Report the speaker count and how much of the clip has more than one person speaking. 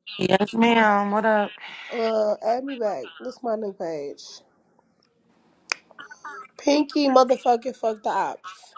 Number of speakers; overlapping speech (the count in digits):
2, no overlap